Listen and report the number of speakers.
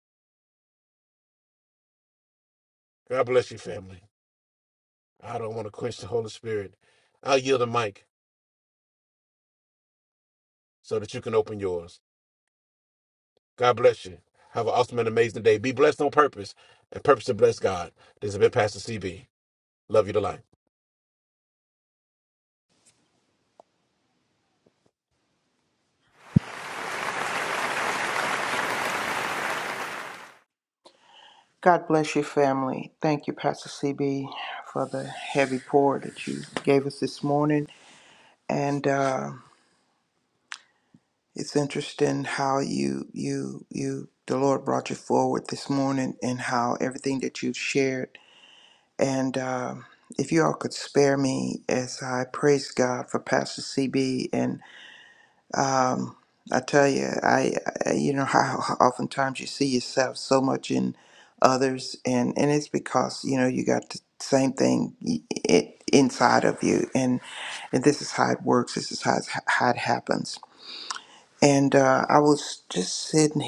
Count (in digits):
2